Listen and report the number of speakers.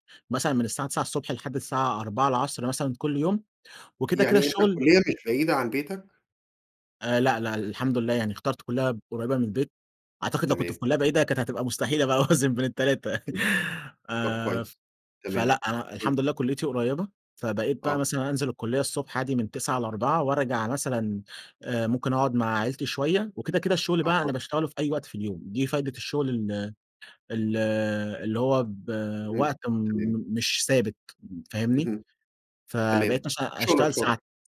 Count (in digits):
2